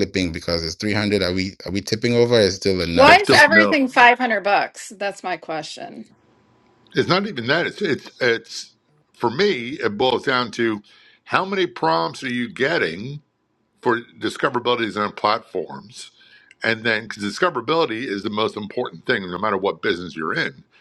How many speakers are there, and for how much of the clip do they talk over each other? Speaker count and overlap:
three, about 5%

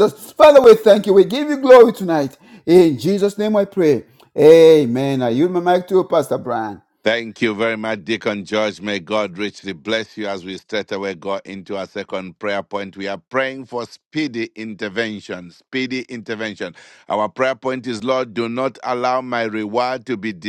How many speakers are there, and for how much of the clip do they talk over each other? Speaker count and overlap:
two, no overlap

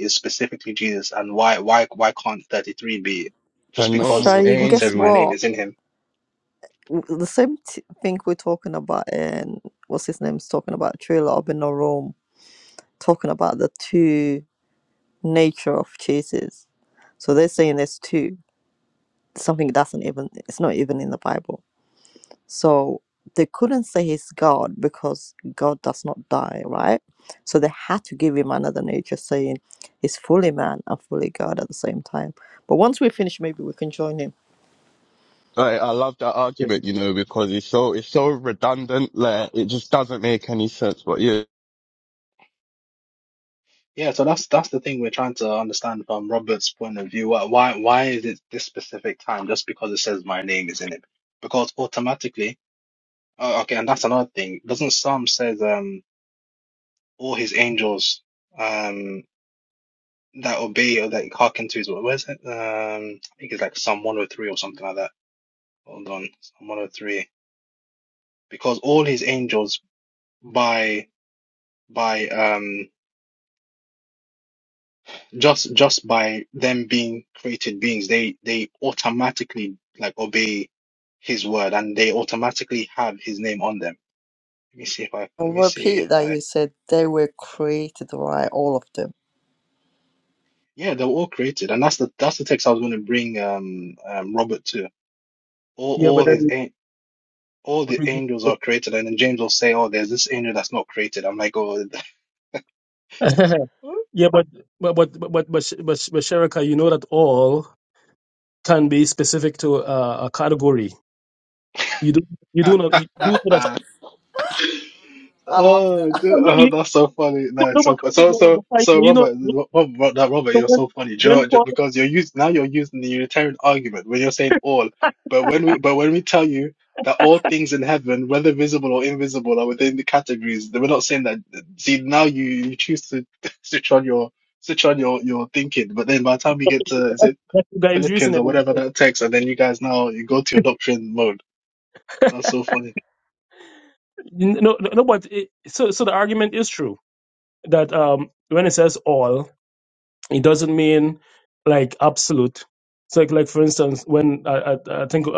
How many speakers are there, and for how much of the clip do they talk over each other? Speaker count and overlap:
four, about 5%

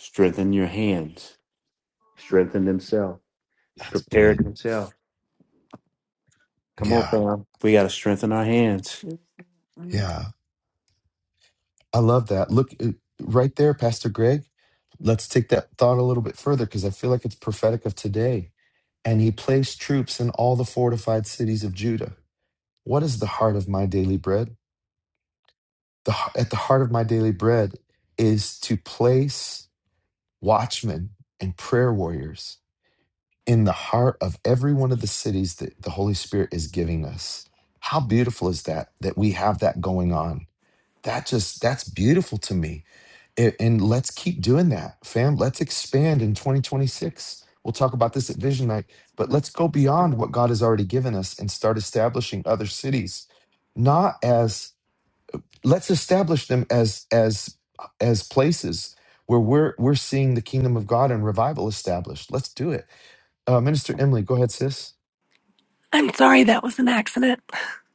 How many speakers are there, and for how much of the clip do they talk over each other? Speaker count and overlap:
three, about 1%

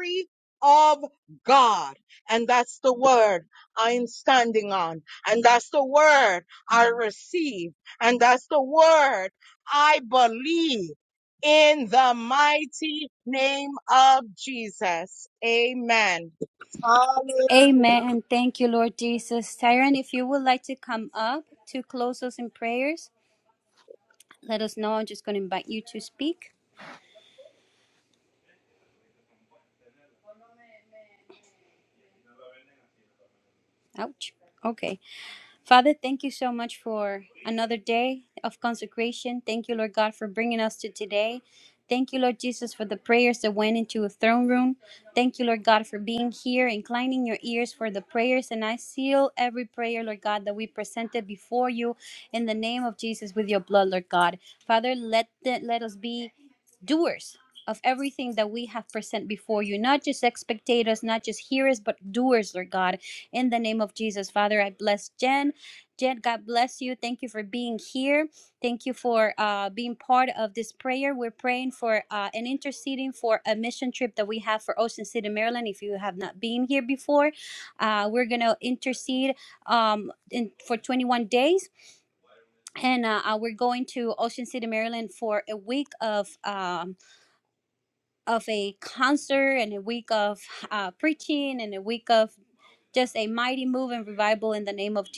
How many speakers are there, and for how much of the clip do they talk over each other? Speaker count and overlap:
two, under 1%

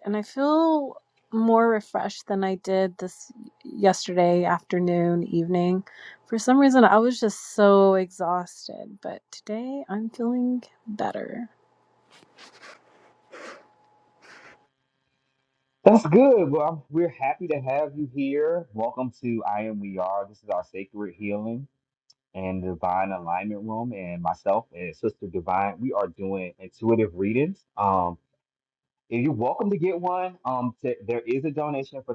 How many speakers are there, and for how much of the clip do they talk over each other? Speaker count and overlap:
two, no overlap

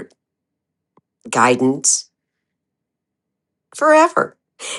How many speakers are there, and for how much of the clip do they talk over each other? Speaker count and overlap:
one, no overlap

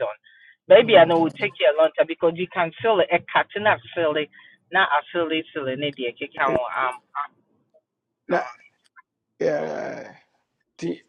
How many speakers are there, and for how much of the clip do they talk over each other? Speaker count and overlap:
two, about 8%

